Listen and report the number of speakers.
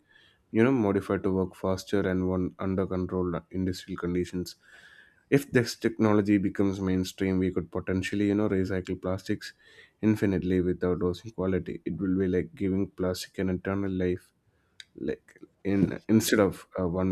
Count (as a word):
one